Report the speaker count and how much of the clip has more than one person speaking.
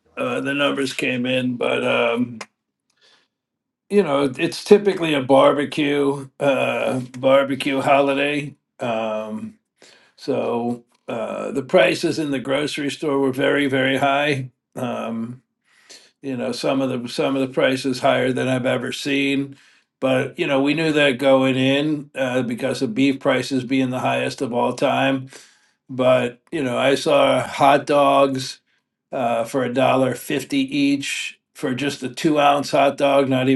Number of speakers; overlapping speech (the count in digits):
1, no overlap